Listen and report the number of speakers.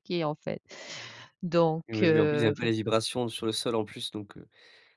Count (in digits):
2